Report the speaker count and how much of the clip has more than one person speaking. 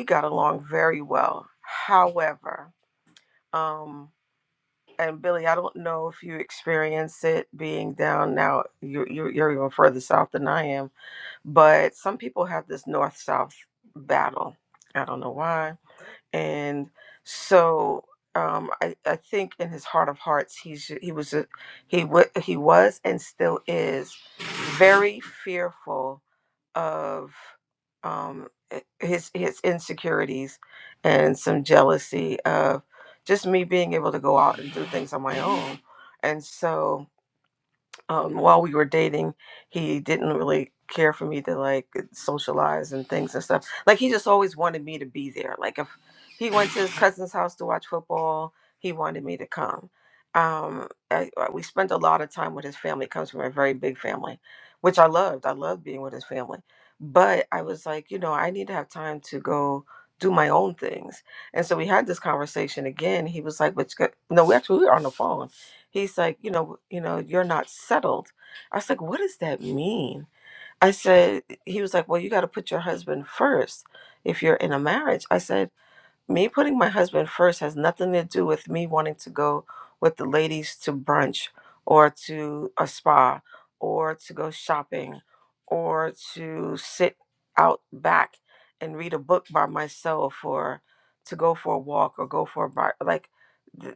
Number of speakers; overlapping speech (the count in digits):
1, no overlap